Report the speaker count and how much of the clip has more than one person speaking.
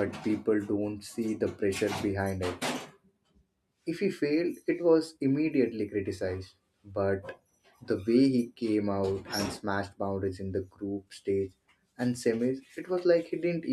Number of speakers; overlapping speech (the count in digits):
1, no overlap